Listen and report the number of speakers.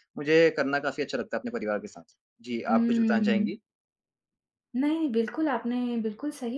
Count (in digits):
2